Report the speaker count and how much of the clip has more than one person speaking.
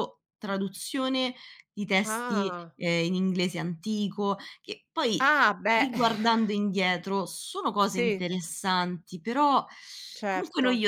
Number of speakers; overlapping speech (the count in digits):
2, about 15%